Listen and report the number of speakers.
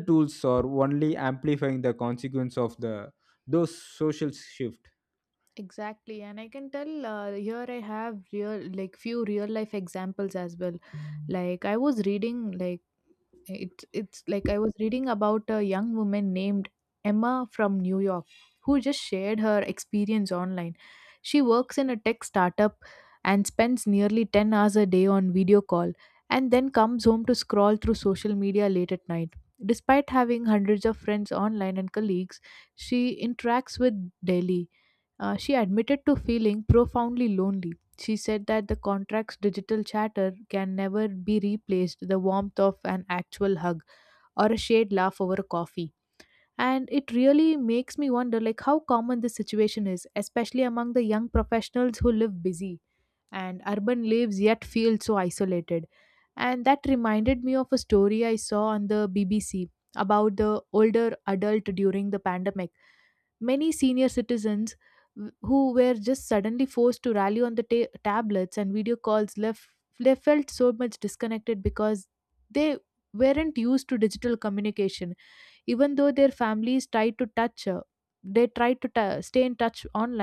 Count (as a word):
two